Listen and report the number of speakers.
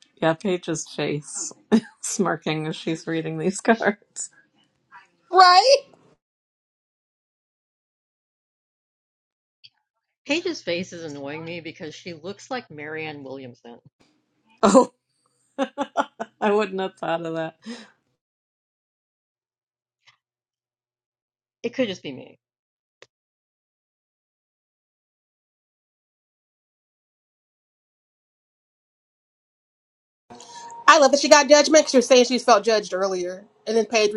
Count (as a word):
three